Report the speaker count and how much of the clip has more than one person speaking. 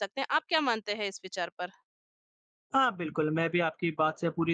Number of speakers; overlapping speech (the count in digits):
2, no overlap